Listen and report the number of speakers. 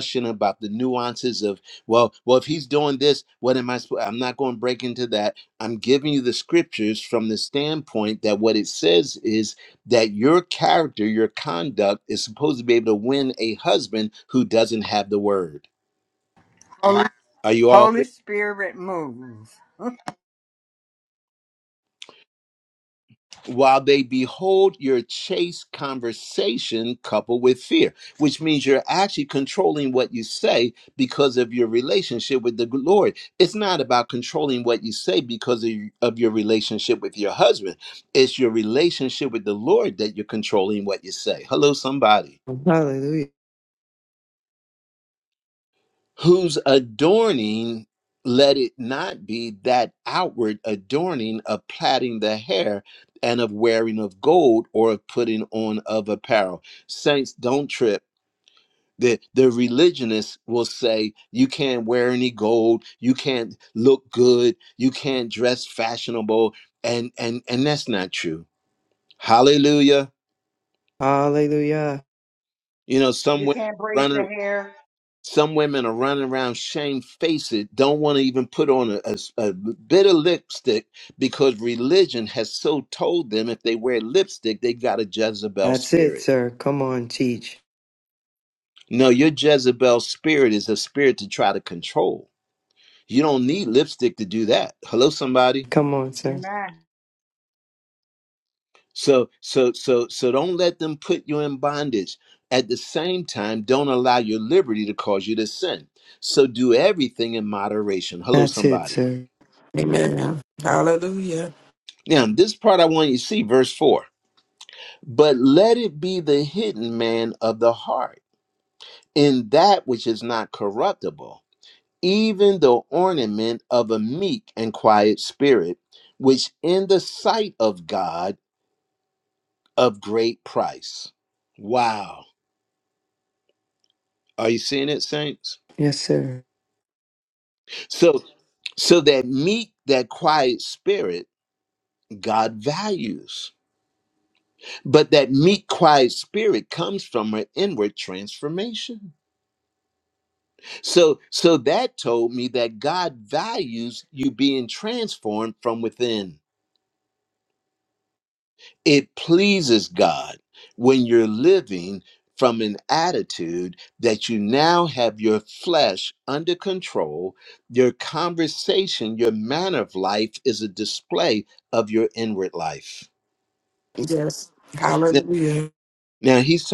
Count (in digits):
5